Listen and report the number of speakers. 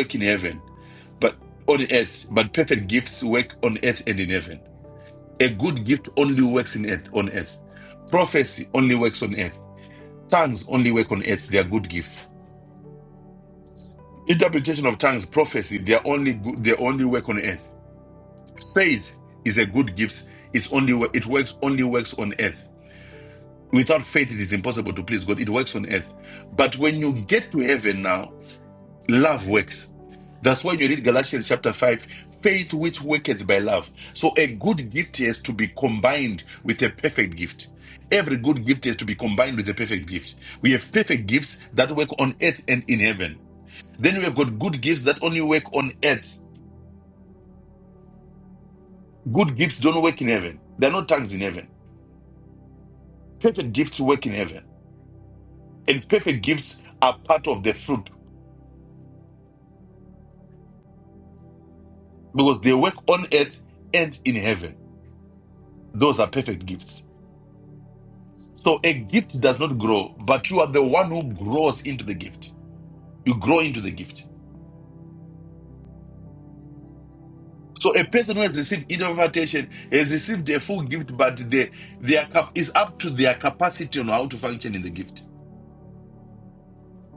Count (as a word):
one